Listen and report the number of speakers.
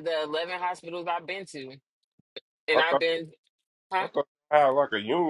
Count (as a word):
two